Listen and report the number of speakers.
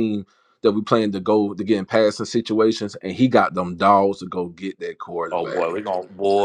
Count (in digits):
2